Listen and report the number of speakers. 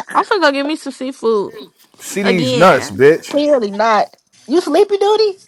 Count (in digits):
3